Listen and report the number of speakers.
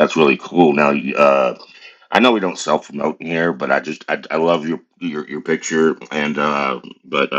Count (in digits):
1